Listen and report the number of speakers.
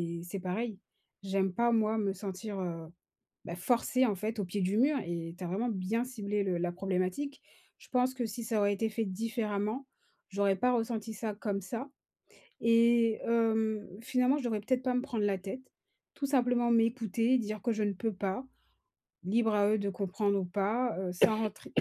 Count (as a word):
one